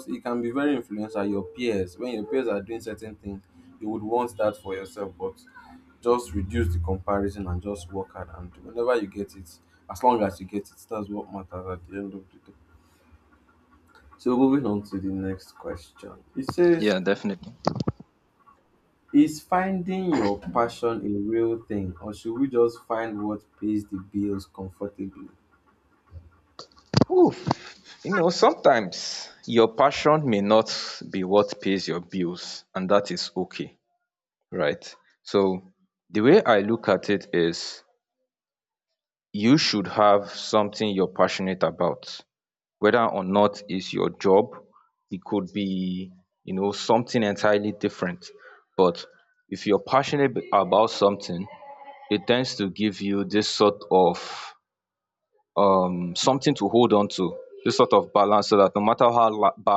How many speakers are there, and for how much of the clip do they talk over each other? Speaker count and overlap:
two, under 1%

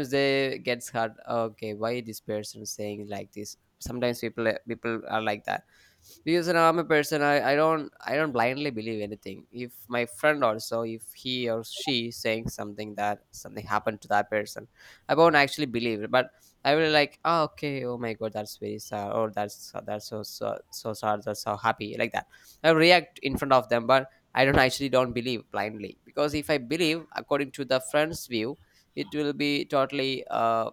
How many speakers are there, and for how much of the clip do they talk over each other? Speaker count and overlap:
one, no overlap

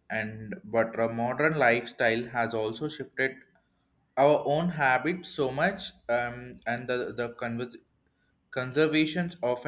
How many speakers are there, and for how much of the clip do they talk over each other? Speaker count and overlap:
one, no overlap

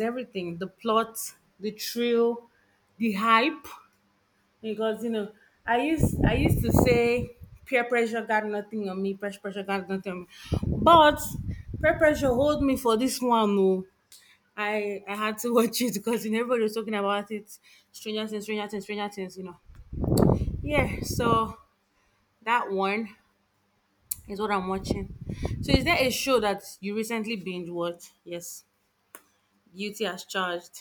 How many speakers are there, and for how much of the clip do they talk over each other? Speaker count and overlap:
one, no overlap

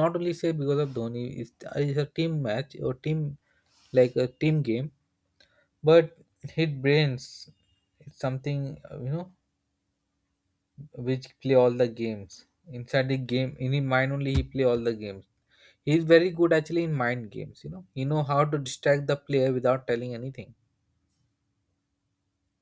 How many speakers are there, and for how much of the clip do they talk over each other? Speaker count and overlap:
one, no overlap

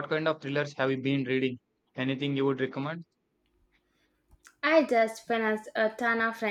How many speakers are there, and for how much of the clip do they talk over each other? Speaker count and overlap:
two, no overlap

